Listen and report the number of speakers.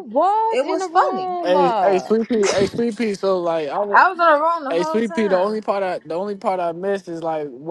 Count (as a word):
three